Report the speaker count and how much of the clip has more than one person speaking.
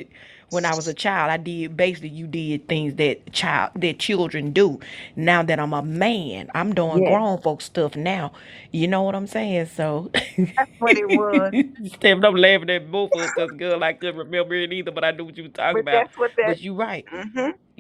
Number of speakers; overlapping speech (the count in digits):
2, about 4%